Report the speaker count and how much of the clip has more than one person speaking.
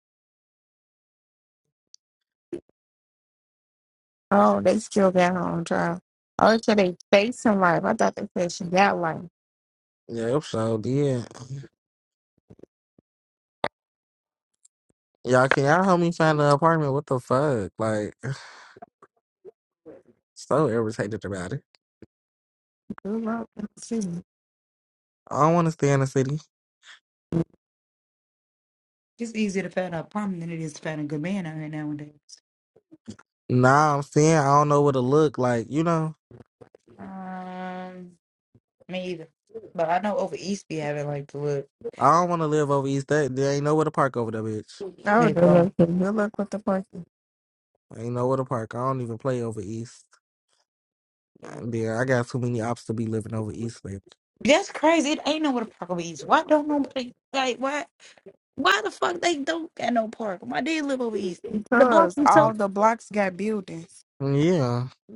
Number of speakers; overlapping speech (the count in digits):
3, about 2%